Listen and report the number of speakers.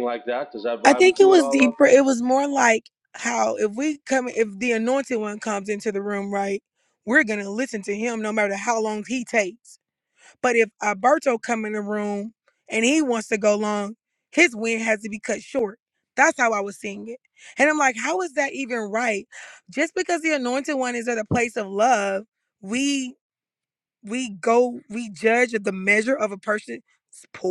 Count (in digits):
2